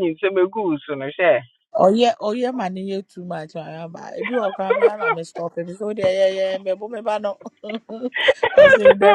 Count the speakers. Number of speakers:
two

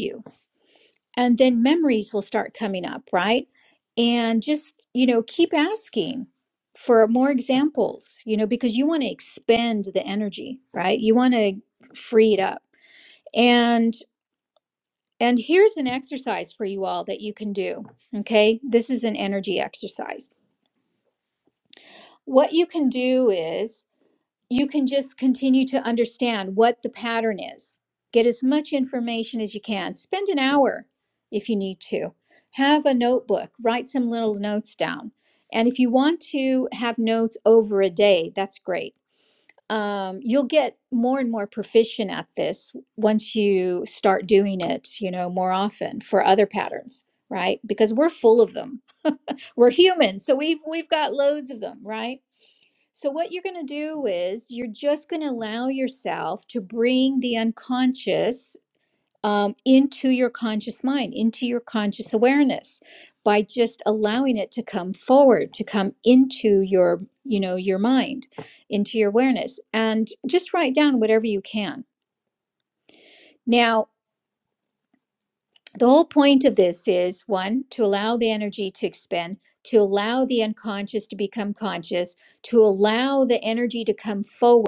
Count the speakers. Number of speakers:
one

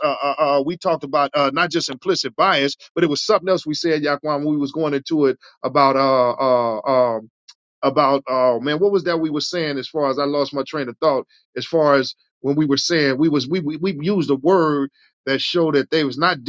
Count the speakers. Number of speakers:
one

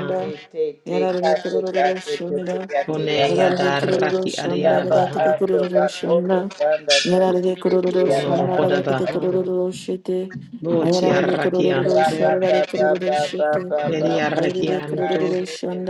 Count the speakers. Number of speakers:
three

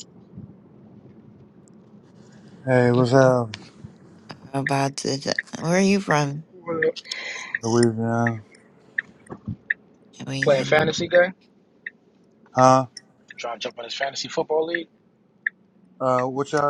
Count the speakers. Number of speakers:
three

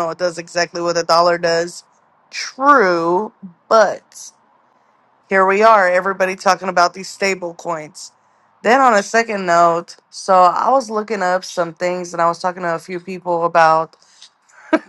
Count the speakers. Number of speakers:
one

